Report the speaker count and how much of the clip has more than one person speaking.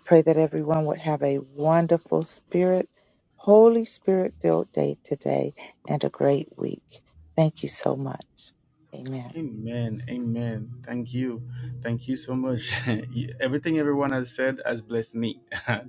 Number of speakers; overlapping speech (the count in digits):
2, no overlap